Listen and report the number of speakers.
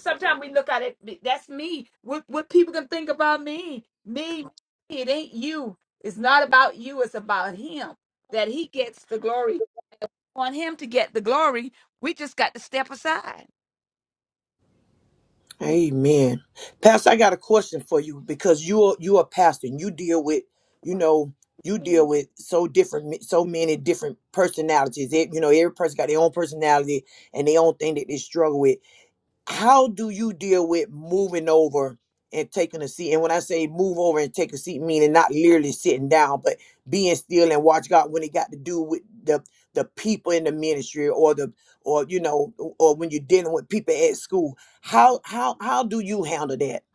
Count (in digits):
2